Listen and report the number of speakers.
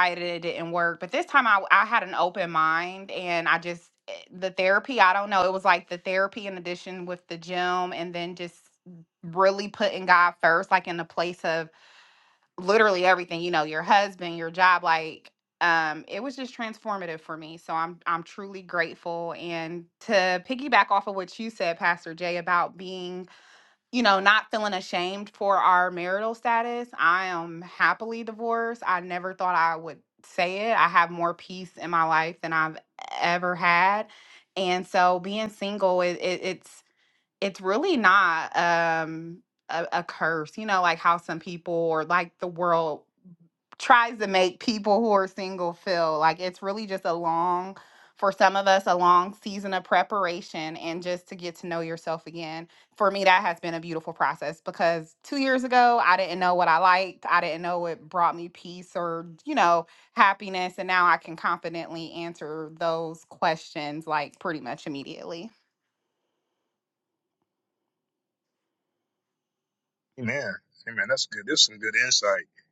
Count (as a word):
two